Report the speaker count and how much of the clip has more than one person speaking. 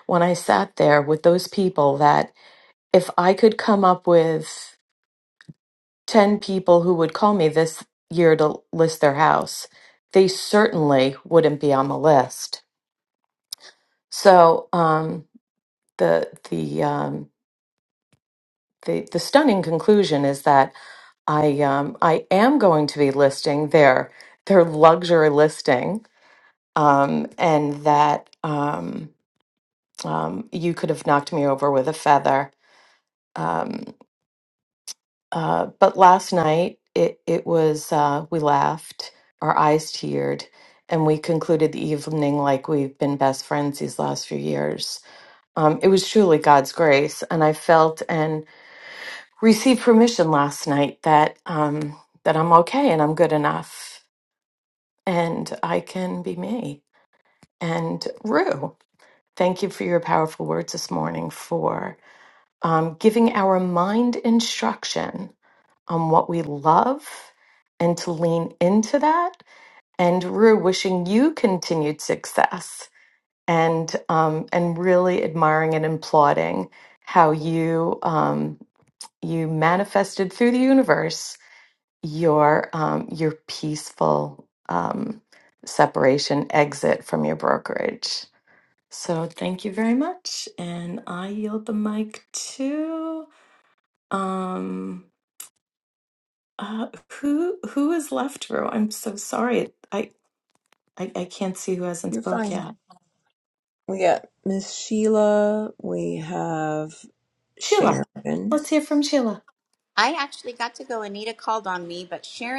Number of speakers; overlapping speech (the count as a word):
three, about 1%